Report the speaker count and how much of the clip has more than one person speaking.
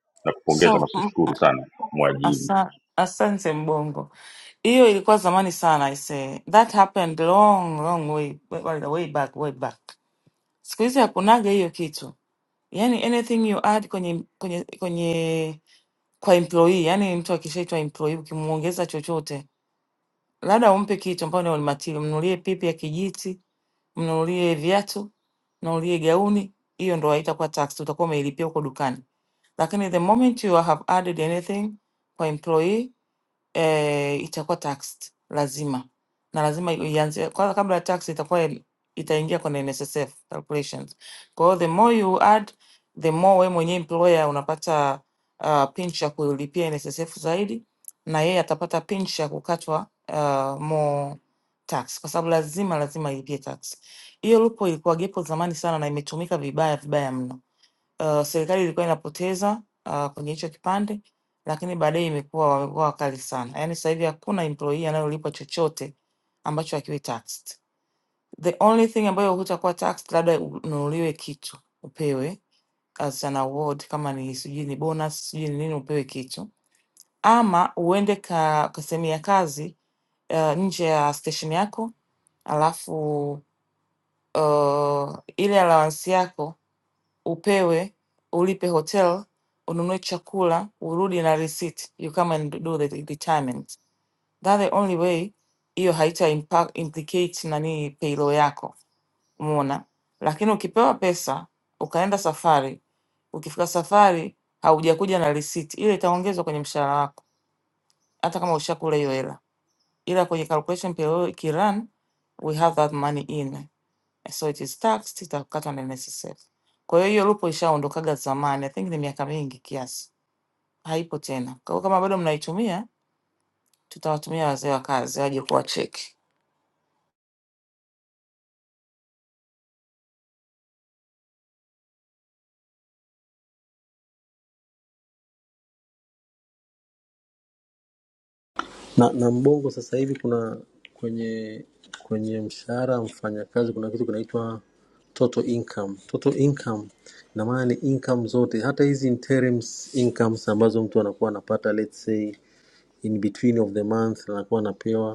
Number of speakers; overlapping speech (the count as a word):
three, about 1%